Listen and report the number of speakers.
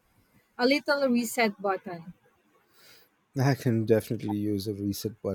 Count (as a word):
two